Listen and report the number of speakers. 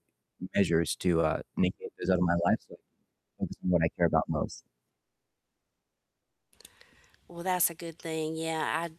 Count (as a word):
two